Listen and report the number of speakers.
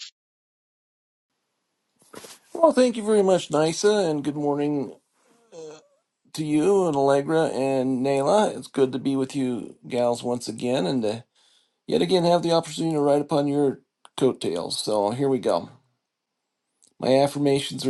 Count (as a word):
one